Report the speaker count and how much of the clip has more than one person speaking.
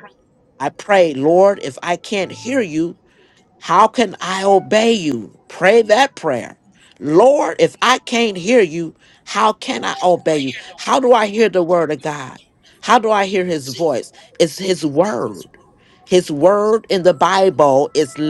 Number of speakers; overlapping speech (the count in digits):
1, no overlap